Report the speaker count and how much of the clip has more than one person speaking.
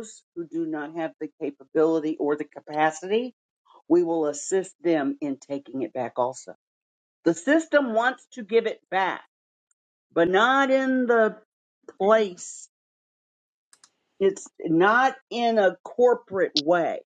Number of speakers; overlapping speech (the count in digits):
1, no overlap